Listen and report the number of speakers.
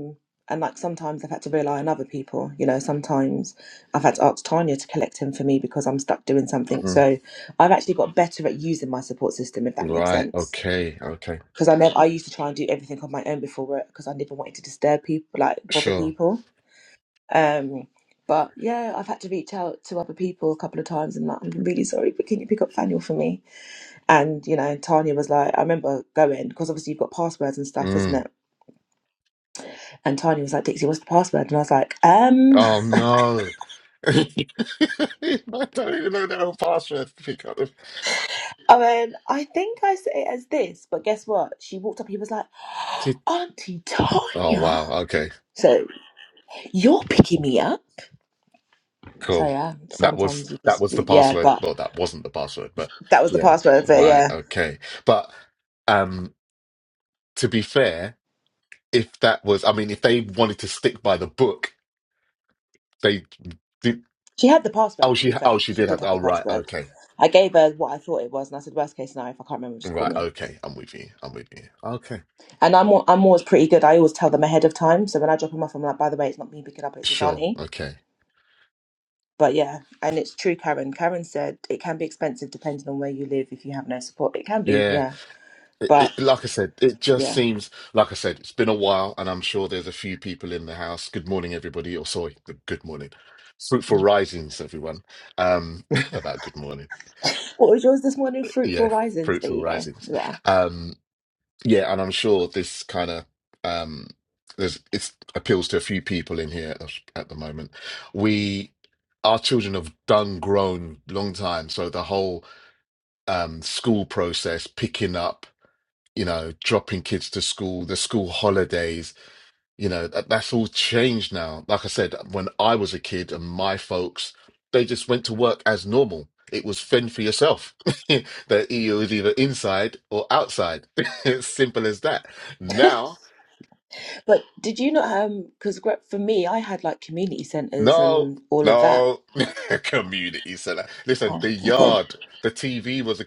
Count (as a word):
two